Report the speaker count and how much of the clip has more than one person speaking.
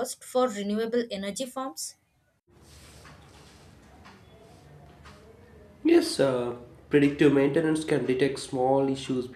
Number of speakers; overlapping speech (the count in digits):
2, no overlap